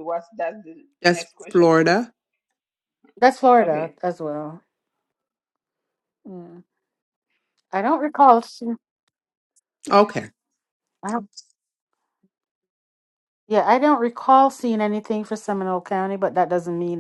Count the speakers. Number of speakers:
three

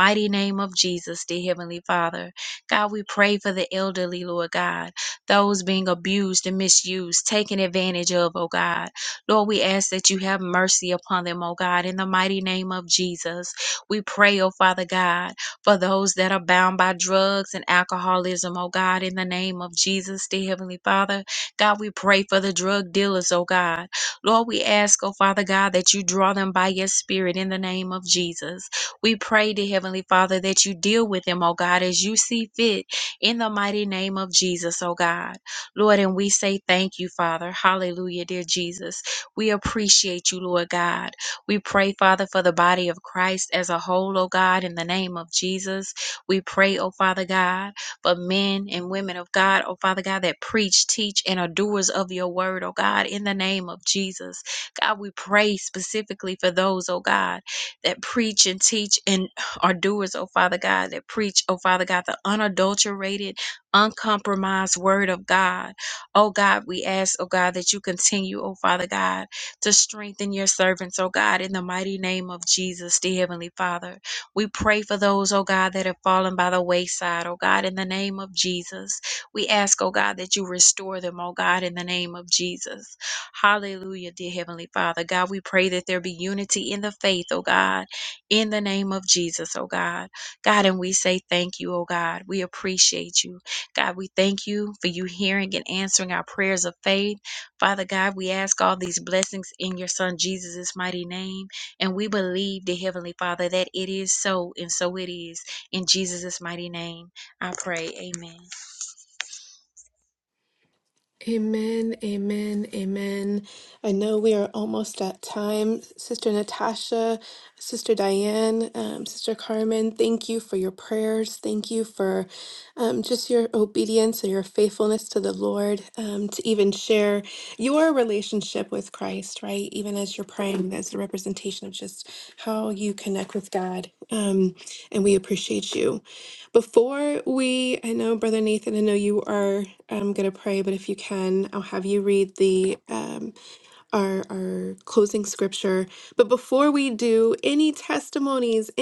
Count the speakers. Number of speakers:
two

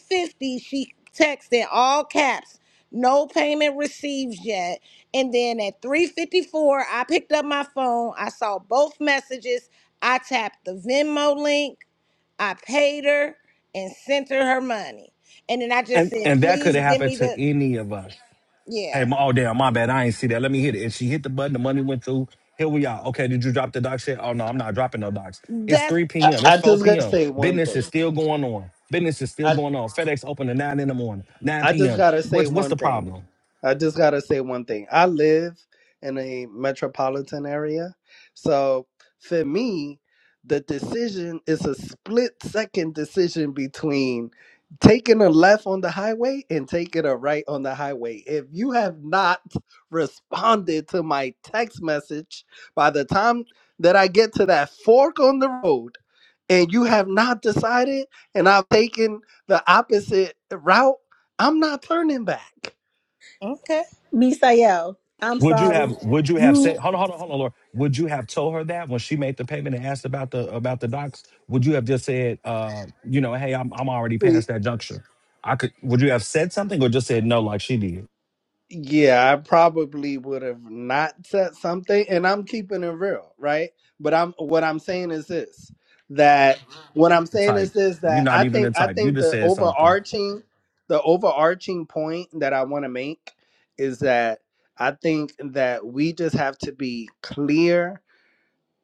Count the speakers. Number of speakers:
four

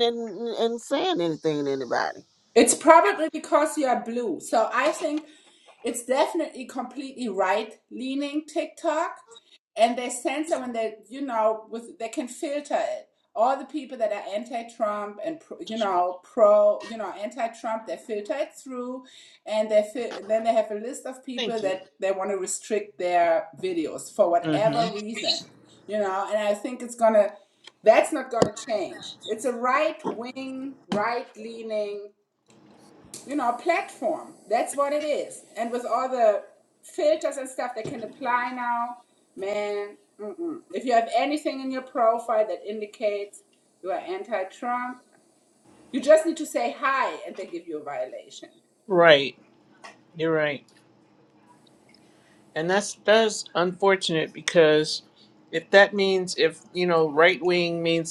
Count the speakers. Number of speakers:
three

